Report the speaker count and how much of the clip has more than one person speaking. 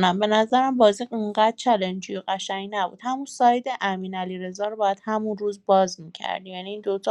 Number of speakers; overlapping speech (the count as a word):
one, no overlap